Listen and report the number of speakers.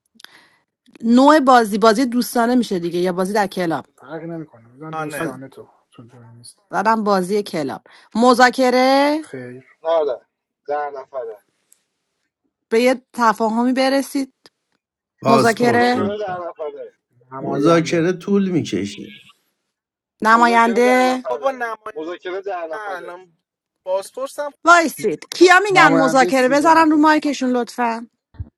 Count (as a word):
five